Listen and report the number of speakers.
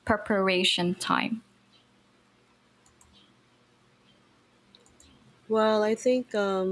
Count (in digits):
2